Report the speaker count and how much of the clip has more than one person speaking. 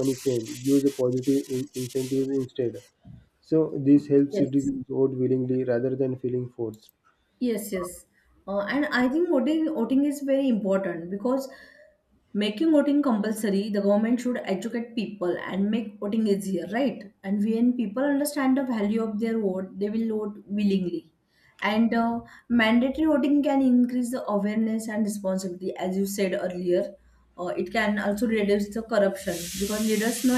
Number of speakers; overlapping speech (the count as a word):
two, about 1%